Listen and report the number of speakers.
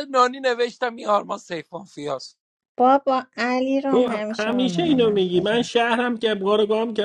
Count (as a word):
three